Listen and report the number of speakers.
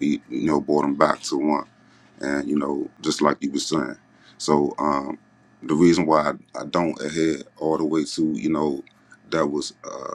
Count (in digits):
1